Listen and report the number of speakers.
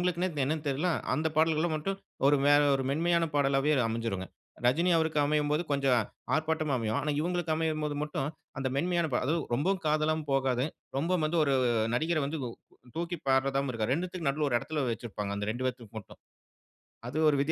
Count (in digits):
1